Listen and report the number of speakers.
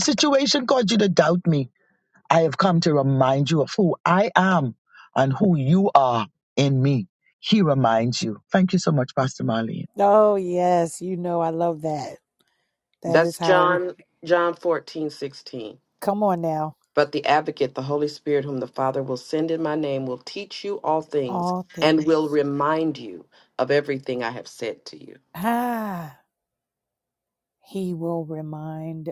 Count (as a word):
three